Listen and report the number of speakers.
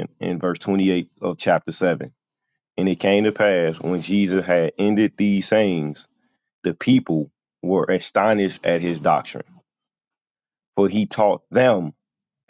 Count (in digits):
1